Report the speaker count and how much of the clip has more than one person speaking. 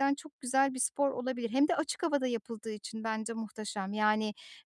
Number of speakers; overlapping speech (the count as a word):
one, no overlap